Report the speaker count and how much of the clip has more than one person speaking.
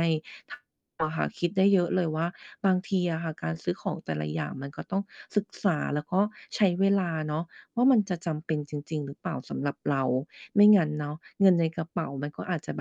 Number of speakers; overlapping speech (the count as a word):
one, no overlap